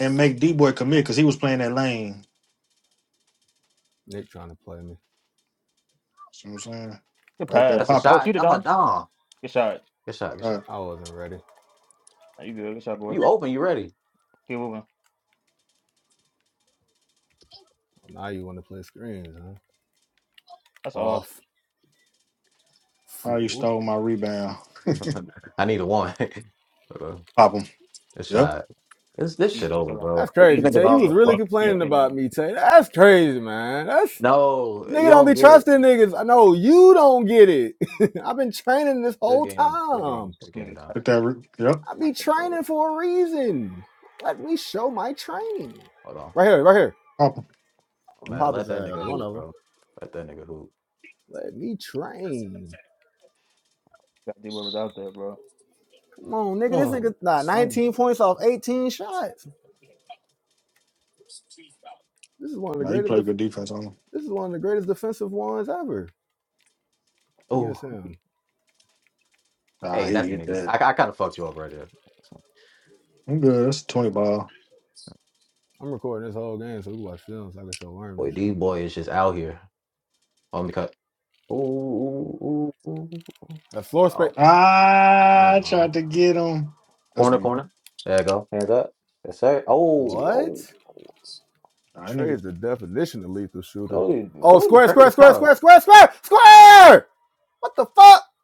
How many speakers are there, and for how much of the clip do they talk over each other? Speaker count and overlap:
4, about 13%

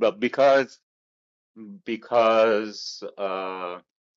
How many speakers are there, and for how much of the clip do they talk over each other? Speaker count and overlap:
1, no overlap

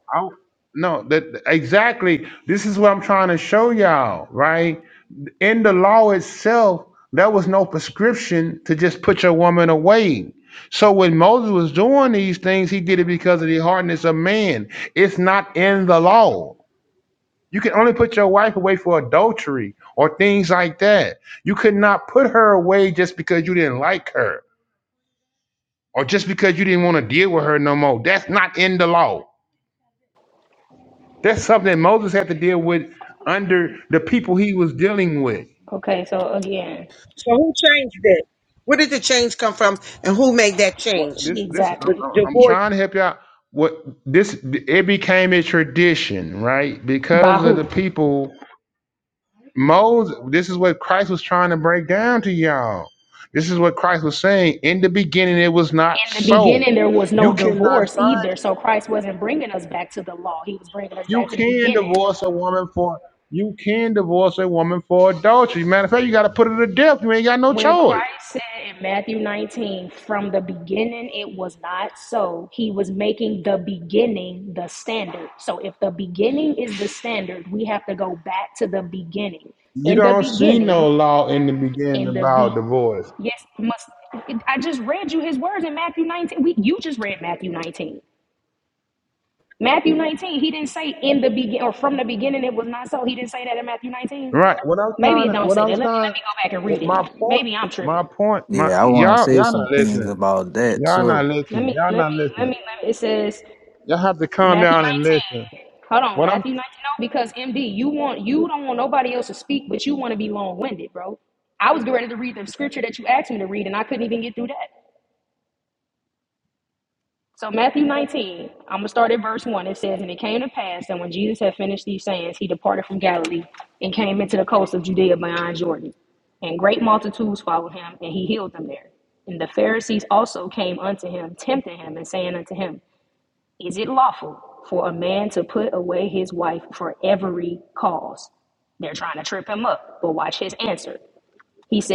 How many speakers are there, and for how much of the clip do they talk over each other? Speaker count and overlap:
4, about 9%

